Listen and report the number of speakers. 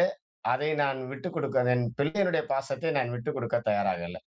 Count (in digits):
1